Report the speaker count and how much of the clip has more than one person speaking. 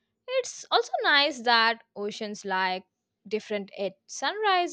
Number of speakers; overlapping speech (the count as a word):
one, no overlap